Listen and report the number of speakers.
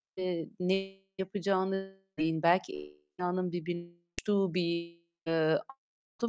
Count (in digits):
1